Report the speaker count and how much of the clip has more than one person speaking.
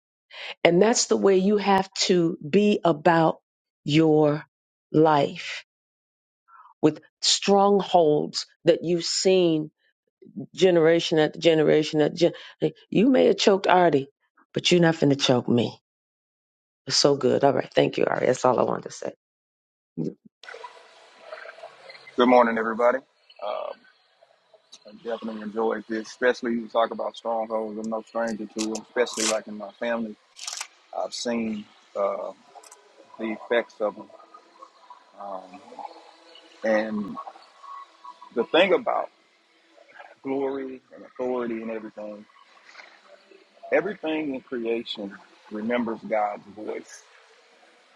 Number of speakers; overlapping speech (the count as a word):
two, no overlap